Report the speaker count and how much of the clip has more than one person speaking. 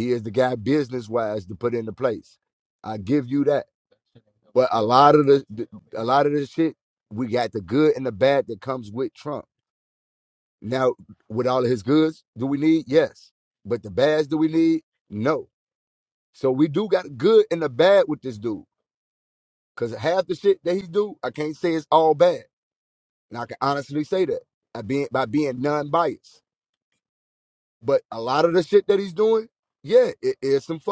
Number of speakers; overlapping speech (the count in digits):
1, no overlap